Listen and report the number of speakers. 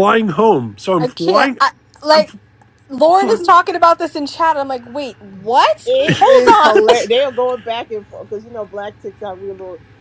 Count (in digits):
3